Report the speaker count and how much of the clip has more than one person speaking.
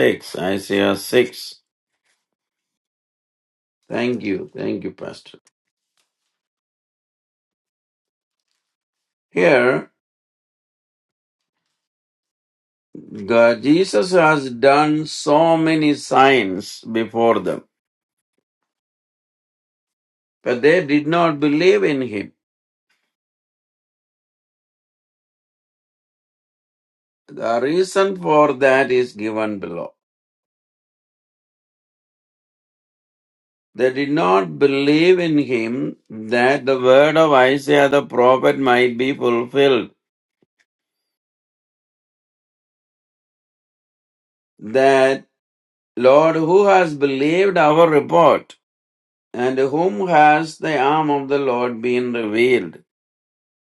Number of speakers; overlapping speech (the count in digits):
1, no overlap